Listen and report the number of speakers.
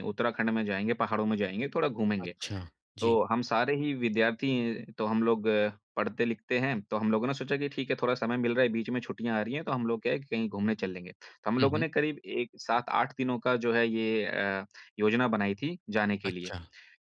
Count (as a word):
two